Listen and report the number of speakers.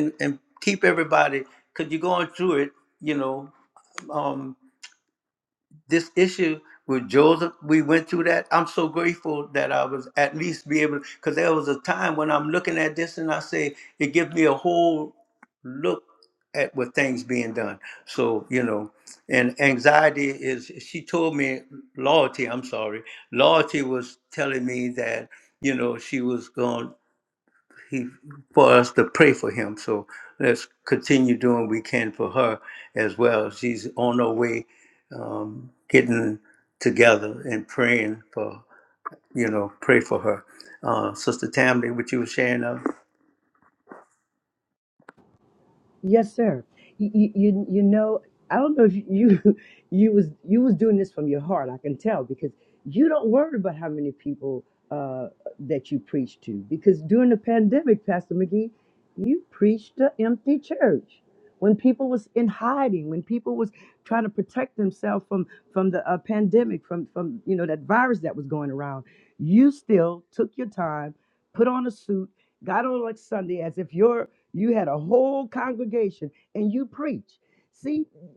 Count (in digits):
2